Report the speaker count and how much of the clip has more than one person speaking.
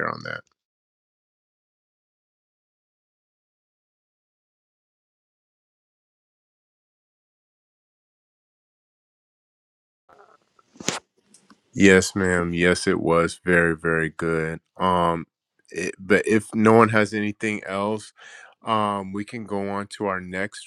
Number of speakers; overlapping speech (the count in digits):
1, no overlap